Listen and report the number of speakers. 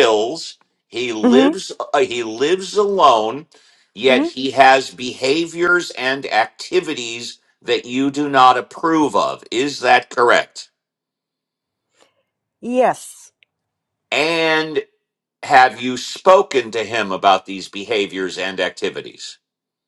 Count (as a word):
two